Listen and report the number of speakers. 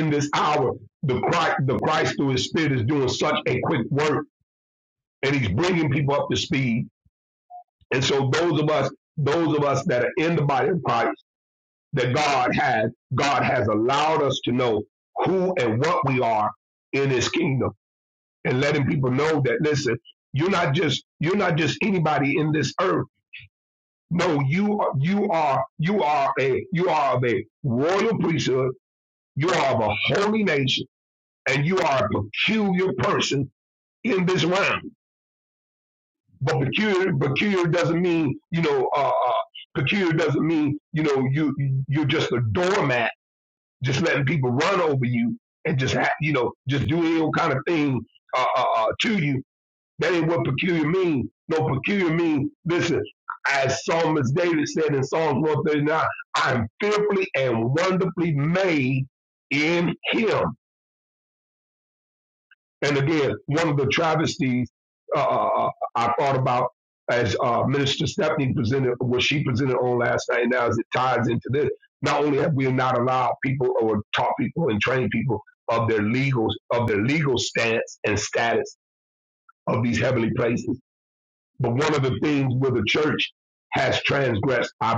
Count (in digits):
1